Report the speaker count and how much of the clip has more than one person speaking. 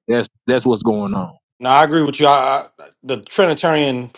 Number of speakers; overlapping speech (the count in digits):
2, no overlap